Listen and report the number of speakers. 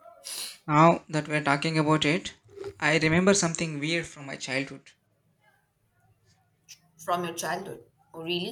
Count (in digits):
2